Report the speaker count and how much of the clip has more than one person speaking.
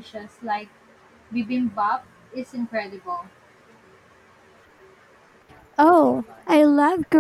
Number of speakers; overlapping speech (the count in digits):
2, no overlap